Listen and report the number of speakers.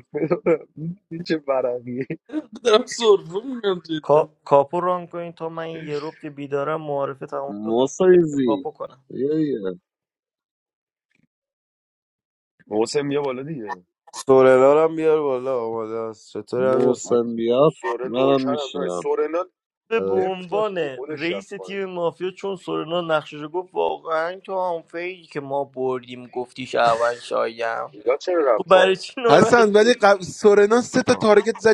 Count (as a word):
six